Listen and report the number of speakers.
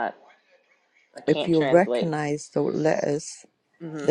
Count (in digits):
2